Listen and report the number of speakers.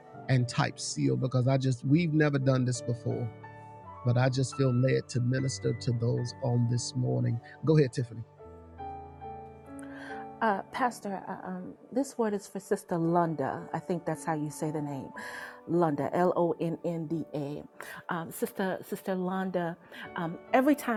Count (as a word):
two